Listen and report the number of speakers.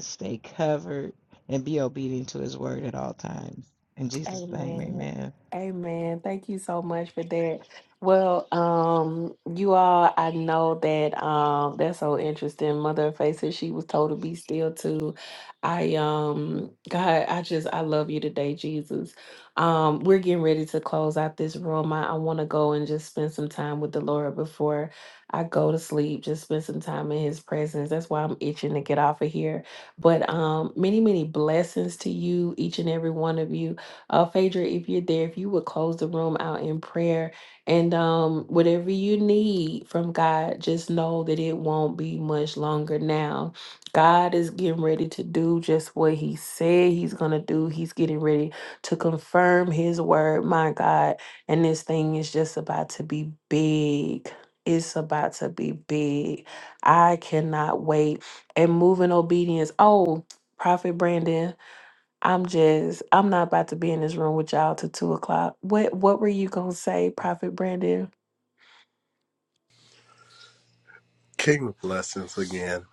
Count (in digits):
3